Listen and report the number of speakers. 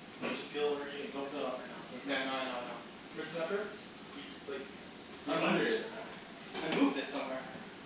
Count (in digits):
2